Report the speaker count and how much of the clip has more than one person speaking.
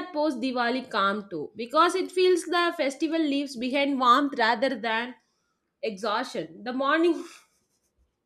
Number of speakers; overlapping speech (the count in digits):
1, no overlap